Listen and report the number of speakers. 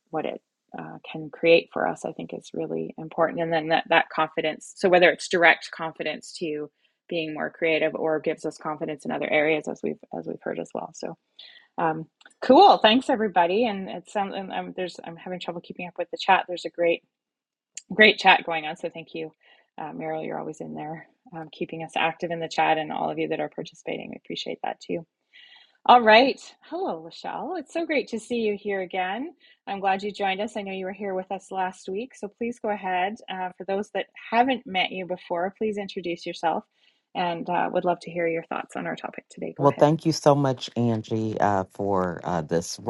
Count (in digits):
2